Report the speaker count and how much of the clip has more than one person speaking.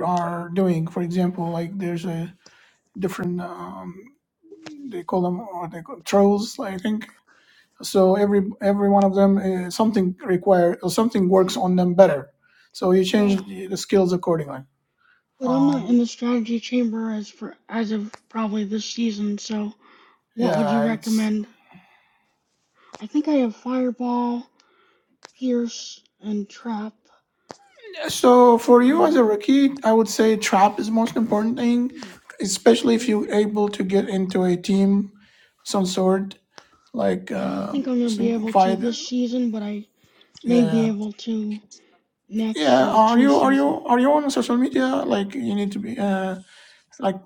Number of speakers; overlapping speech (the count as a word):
two, about 12%